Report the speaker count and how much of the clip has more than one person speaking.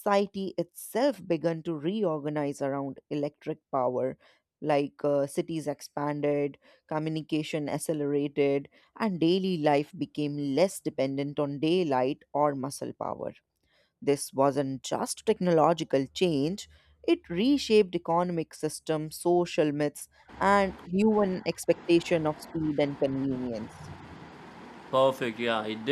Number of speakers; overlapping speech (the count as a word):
two, no overlap